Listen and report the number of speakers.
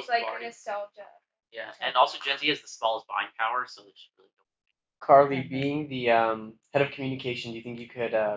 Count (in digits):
3